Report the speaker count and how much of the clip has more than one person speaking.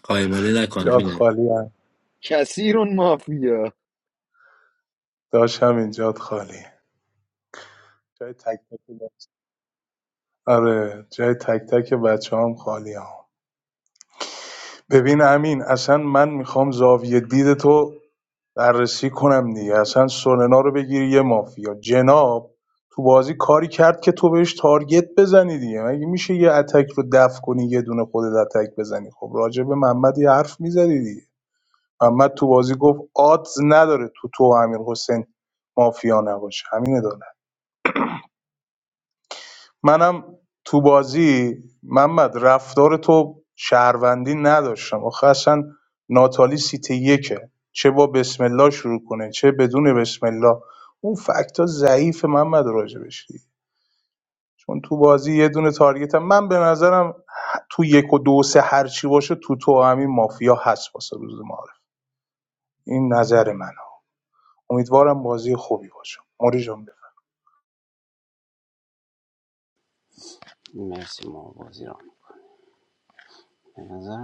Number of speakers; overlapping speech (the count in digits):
4, about 1%